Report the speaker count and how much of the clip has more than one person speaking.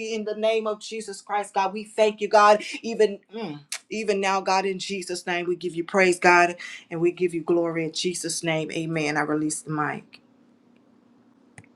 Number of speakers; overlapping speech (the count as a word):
one, no overlap